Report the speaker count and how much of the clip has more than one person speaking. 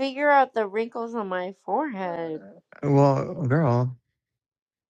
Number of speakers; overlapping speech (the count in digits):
2, no overlap